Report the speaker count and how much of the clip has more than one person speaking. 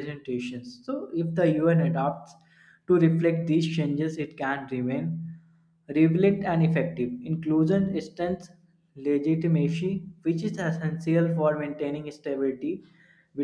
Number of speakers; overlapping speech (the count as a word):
one, no overlap